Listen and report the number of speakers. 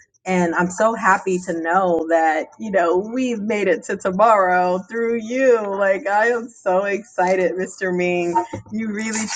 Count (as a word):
one